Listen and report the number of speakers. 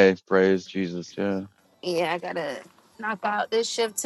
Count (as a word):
two